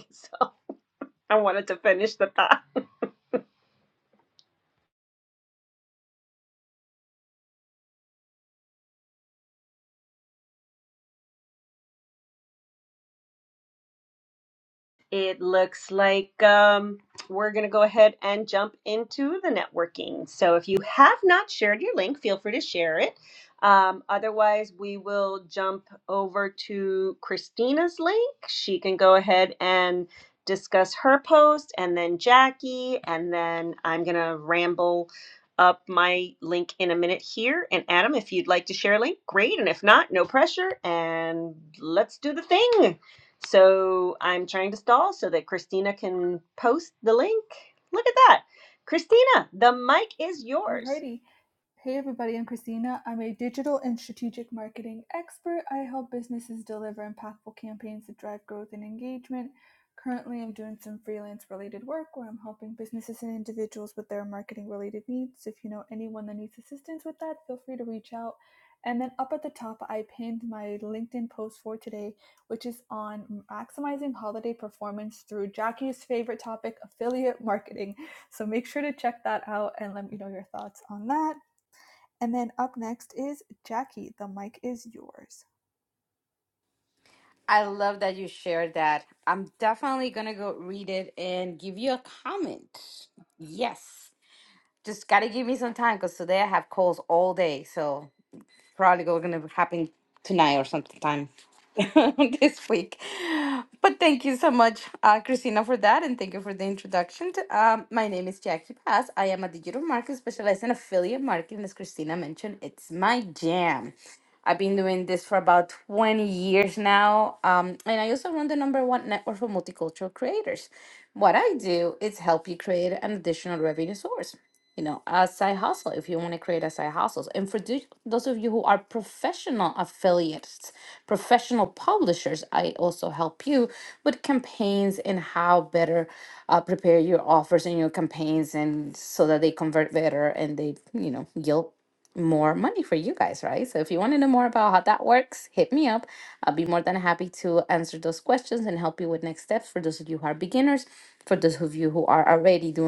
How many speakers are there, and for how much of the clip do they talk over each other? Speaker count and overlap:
three, under 1%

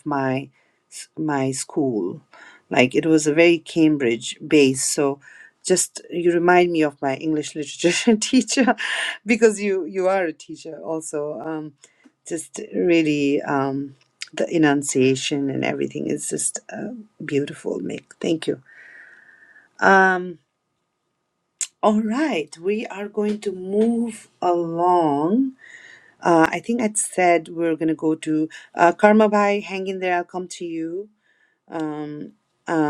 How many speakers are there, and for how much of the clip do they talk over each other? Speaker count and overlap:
one, no overlap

